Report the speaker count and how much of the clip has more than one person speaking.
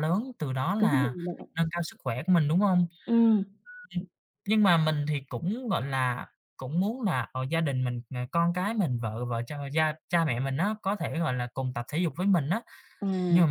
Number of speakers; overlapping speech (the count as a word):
two, about 4%